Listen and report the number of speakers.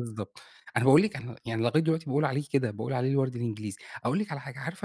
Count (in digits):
1